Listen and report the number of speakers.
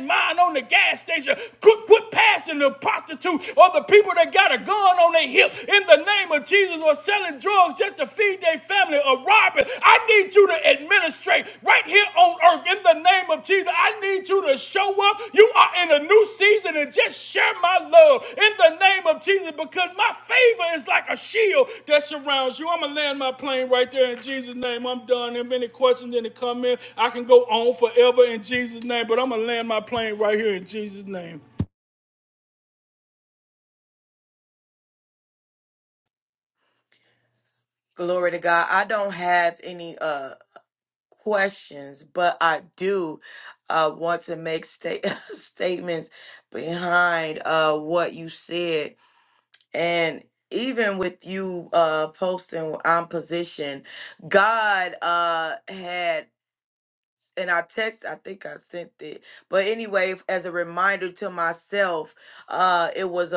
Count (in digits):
2